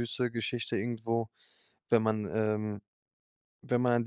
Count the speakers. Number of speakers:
one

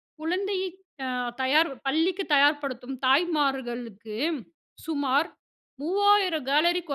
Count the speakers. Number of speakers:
one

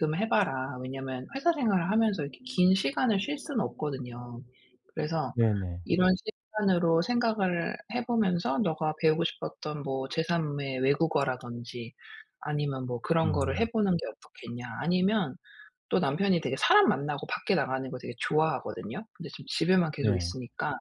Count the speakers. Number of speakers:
two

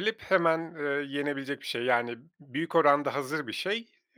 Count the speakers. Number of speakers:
one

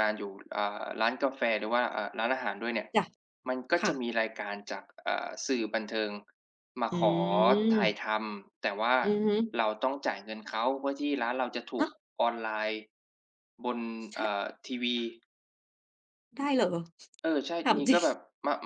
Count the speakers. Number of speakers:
two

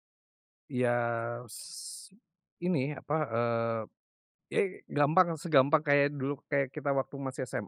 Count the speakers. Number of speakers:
one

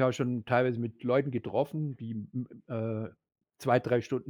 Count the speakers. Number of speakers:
one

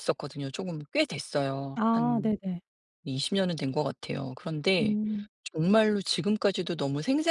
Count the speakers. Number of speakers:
two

